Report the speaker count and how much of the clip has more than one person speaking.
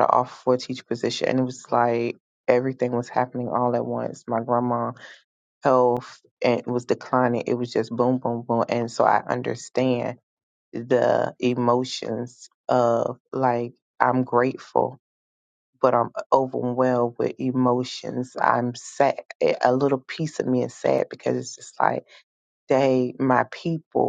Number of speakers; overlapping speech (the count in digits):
1, no overlap